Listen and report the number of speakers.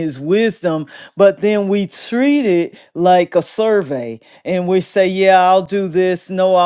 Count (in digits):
1